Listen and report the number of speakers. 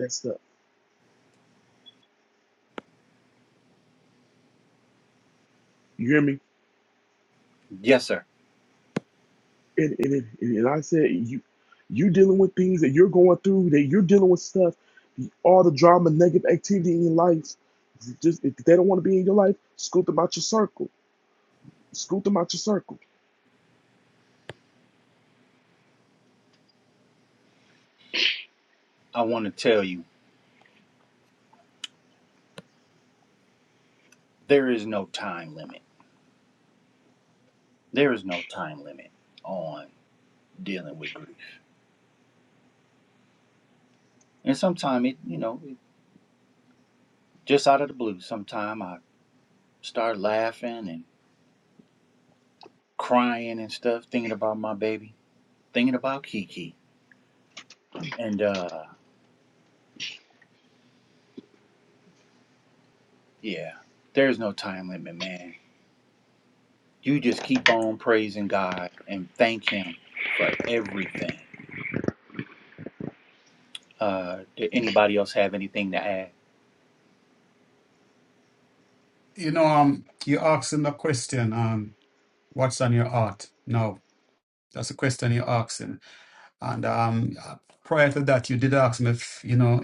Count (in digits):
3